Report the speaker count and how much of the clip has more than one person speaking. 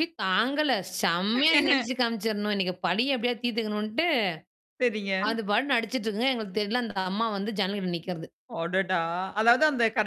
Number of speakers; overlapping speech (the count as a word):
two, no overlap